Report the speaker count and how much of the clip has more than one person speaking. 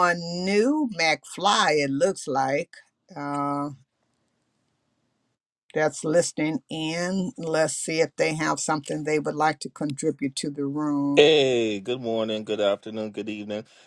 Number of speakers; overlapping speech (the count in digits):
2, under 1%